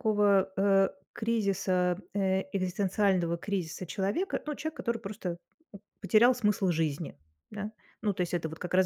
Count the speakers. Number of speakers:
1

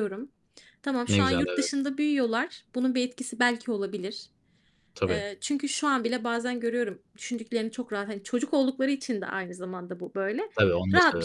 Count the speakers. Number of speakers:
2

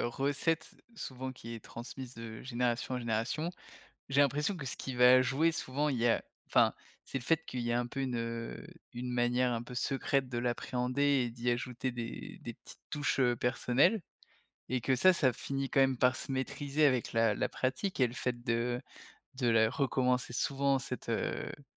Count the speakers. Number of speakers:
1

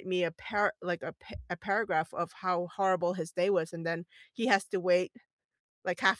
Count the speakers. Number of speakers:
1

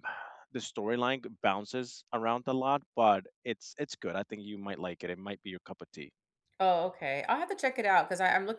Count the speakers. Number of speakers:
2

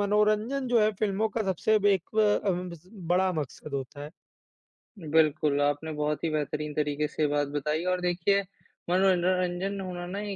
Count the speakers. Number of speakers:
2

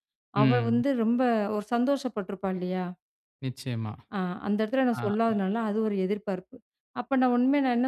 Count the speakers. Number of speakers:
2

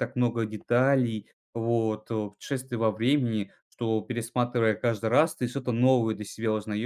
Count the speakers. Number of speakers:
1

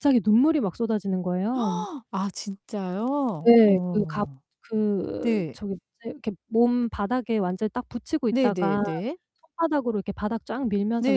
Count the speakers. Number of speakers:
2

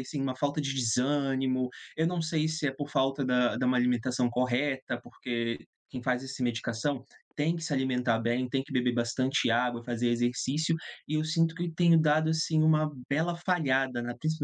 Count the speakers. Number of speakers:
1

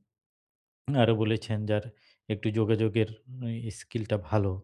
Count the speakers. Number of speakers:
1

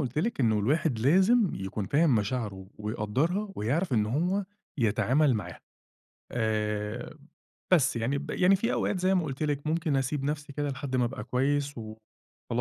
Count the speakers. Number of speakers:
1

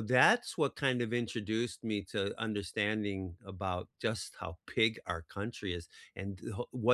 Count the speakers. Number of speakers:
1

